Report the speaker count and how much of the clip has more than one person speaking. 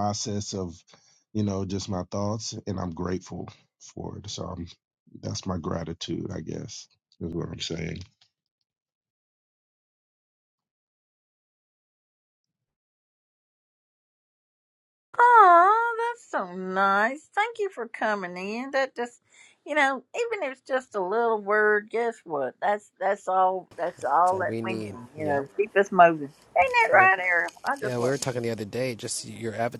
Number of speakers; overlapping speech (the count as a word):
three, about 4%